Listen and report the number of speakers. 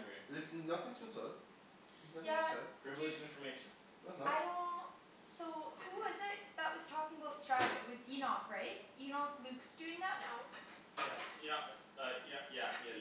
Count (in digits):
4